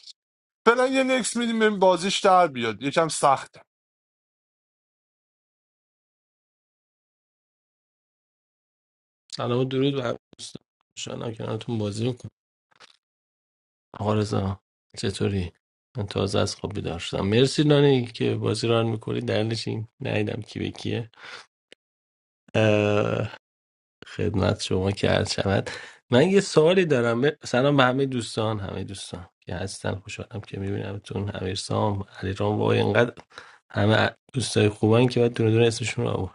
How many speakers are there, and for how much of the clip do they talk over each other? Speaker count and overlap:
two, no overlap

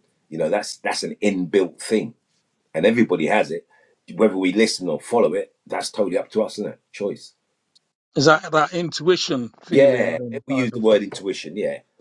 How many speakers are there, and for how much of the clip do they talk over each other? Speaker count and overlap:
two, about 9%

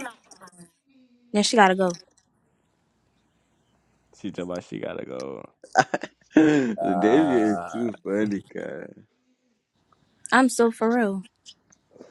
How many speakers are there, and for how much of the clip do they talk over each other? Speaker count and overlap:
three, about 9%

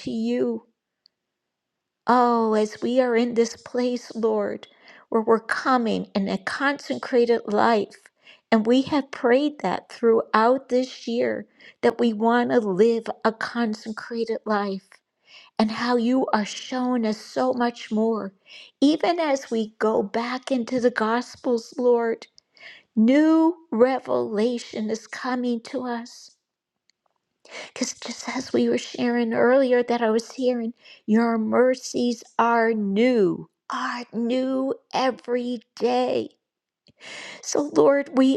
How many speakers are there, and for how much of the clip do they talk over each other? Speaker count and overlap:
one, no overlap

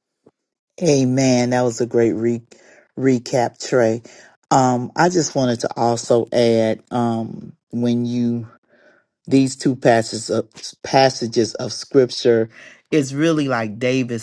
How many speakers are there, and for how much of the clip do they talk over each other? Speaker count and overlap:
one, no overlap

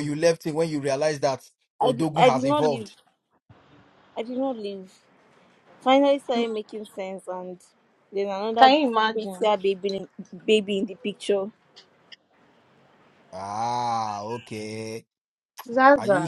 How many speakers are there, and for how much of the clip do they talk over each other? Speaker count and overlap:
three, about 10%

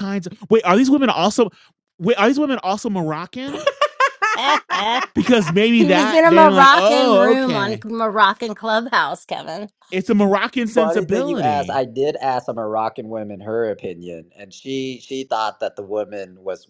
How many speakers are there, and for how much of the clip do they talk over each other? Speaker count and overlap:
three, about 18%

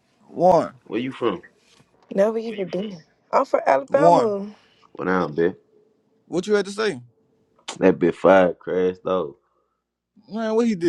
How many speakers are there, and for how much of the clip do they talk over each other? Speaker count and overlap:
three, about 3%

